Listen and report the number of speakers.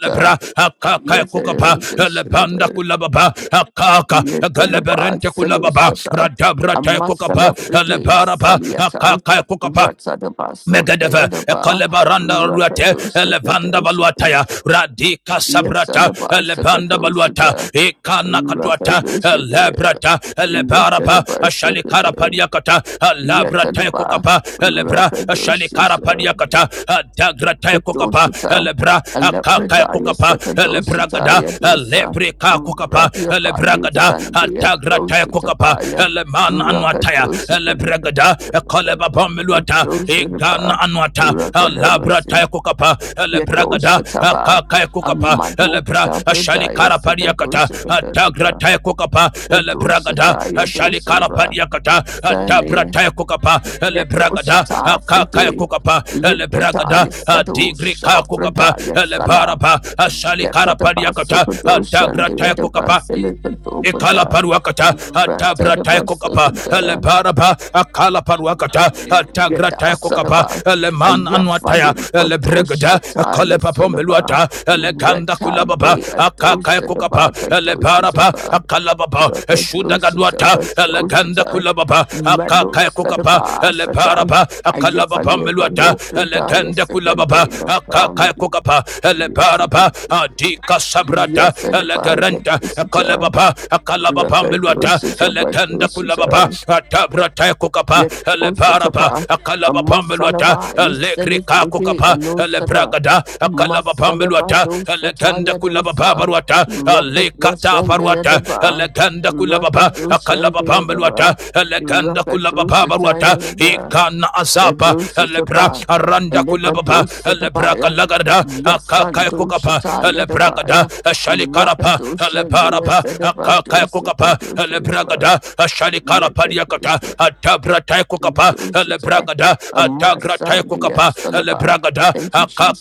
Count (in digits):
2